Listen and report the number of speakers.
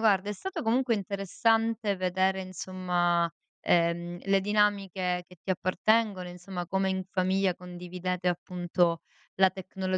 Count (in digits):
1